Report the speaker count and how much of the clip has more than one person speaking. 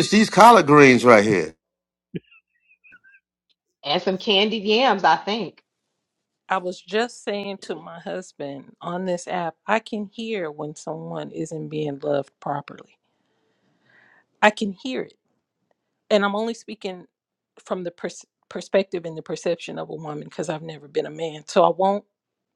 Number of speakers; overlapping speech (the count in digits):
3, no overlap